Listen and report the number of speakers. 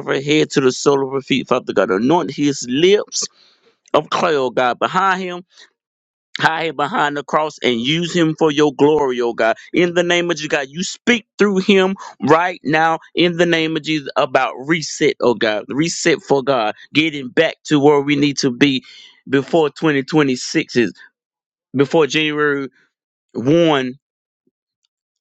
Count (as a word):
one